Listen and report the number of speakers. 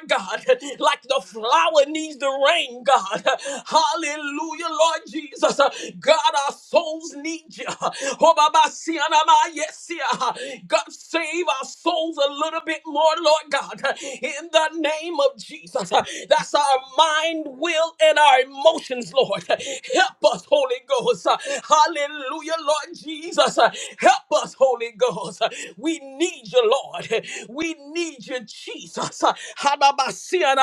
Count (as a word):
one